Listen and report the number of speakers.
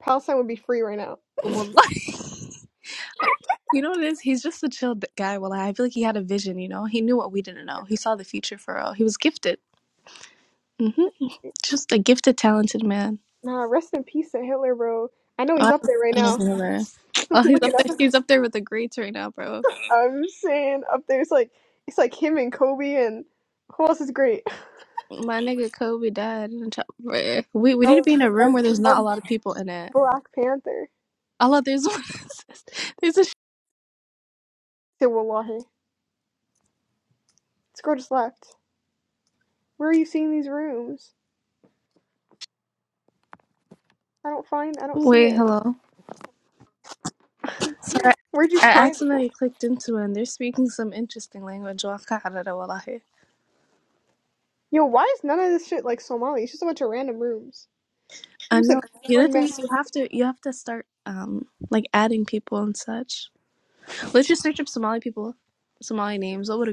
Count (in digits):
2